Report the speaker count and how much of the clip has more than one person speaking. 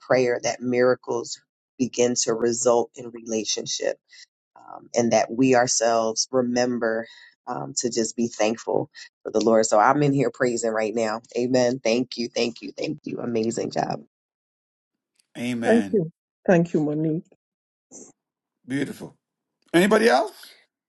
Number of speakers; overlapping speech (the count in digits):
3, about 2%